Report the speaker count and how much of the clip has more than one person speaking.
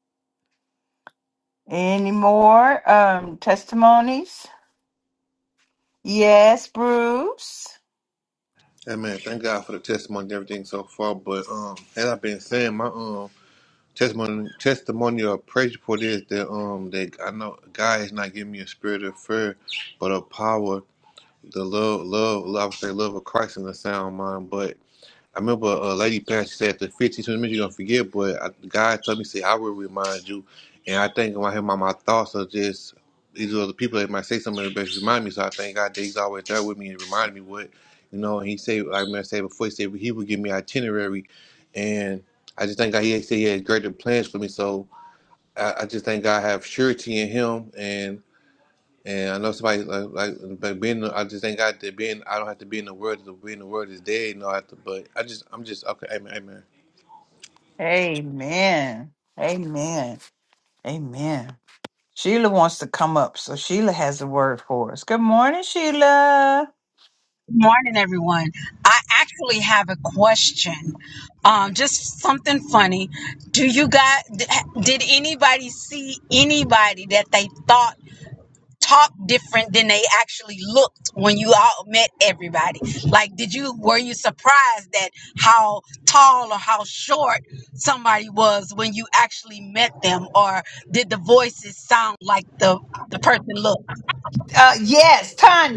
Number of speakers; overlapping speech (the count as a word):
three, no overlap